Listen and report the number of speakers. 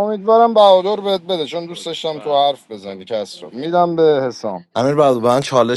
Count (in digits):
2